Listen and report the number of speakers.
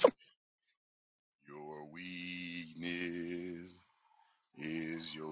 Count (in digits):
1